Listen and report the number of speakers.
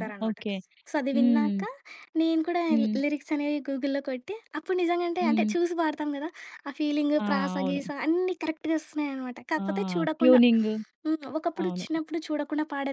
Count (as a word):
two